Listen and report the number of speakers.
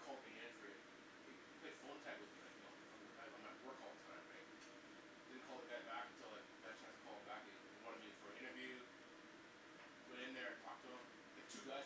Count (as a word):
one